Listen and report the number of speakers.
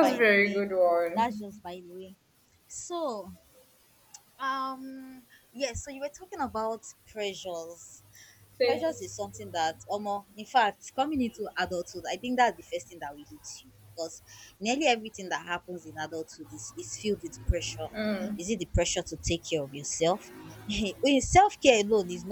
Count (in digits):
2